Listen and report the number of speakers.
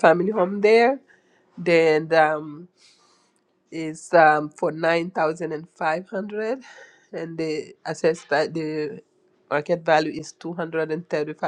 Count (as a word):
one